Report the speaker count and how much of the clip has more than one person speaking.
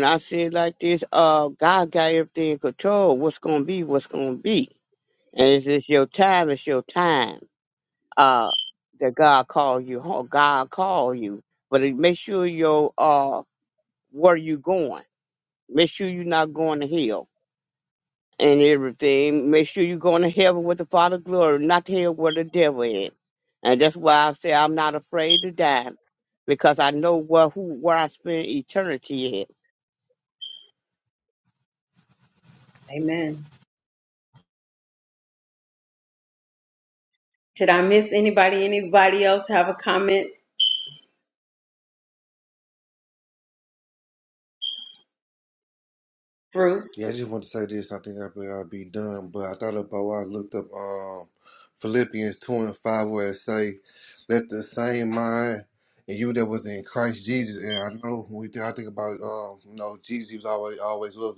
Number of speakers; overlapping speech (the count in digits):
3, no overlap